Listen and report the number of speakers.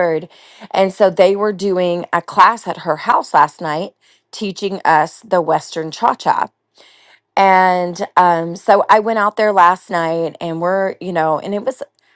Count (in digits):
1